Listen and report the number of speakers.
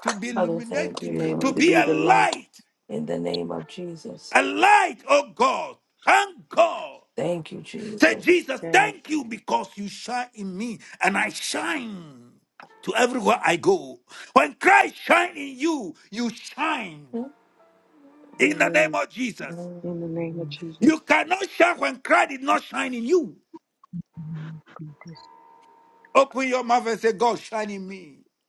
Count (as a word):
three